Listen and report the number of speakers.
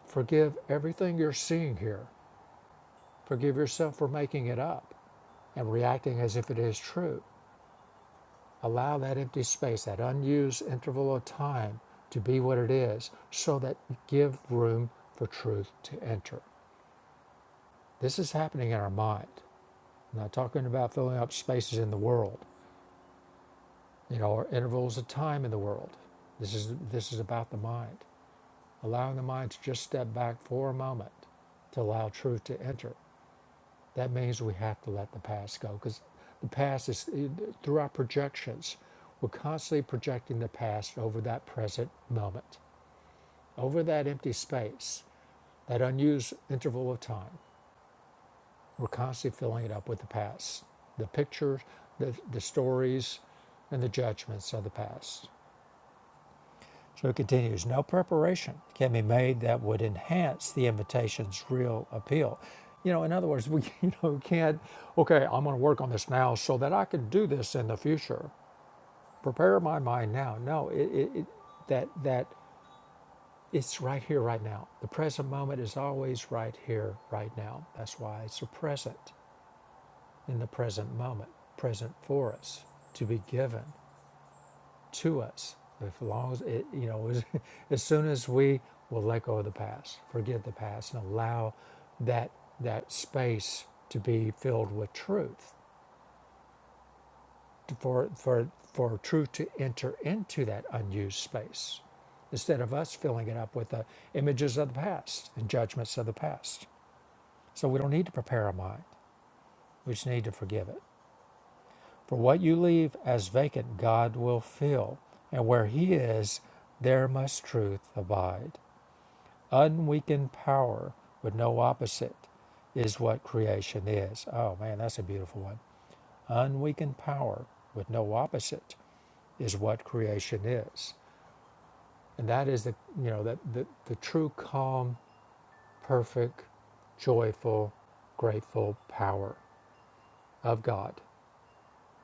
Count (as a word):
one